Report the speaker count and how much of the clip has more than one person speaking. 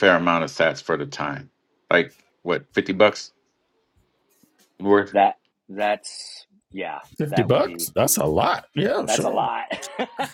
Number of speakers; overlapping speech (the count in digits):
3, about 11%